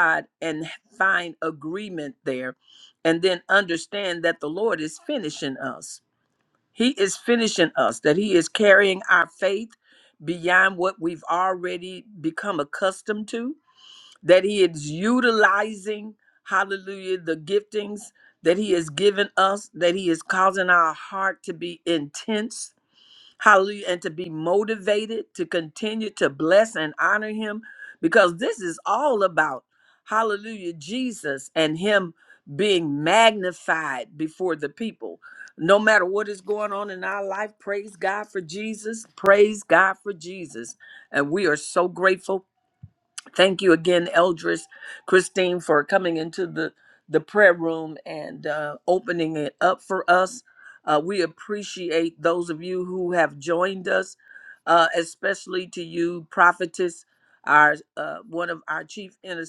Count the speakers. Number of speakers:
one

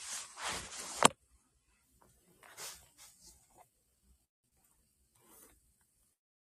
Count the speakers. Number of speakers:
zero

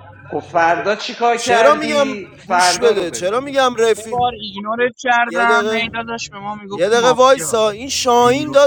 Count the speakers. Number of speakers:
three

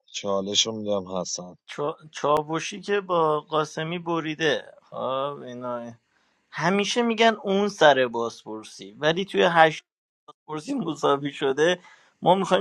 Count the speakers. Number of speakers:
two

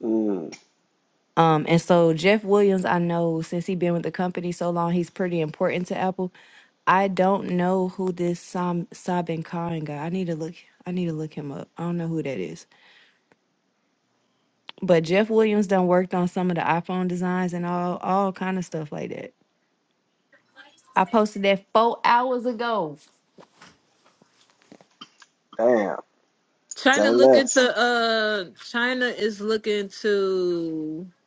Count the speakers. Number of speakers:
three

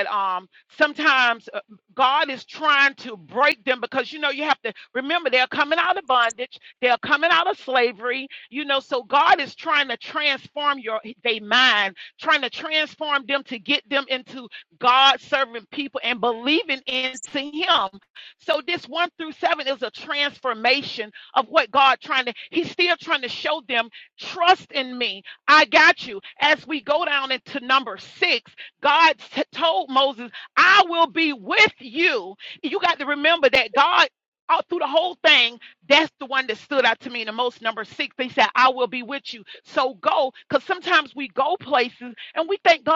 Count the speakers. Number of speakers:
one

